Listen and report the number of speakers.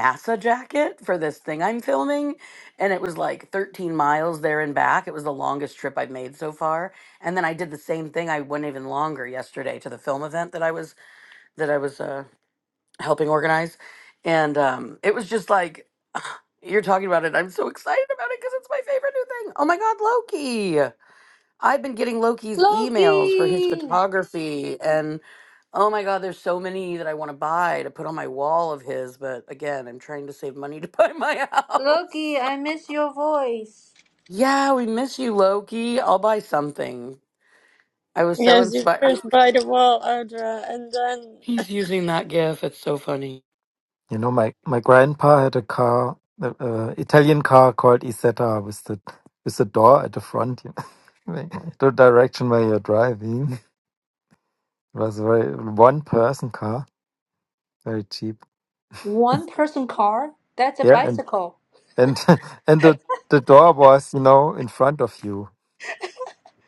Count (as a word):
four